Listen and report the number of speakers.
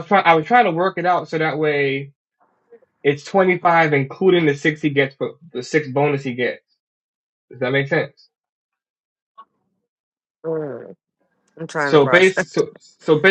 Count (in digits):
2